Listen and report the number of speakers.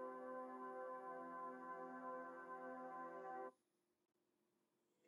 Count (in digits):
0